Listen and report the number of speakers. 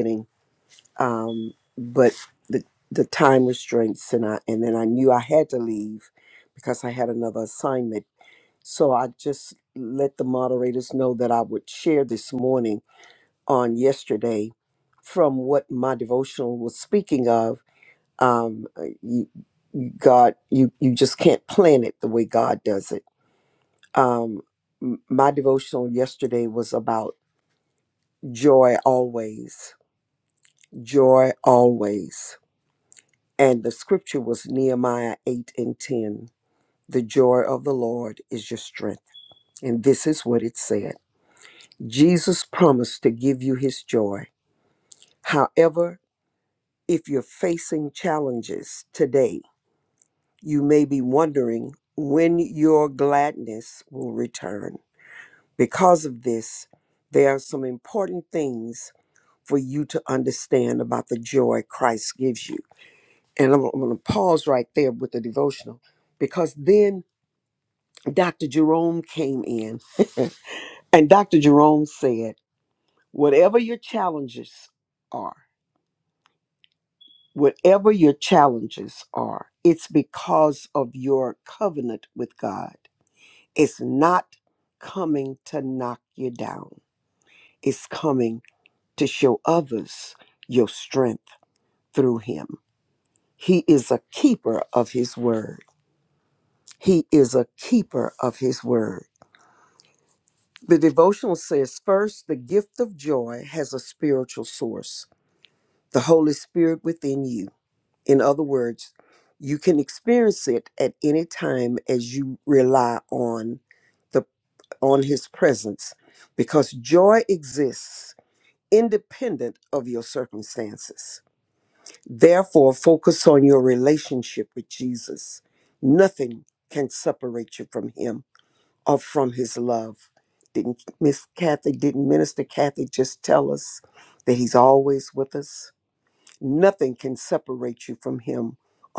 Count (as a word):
one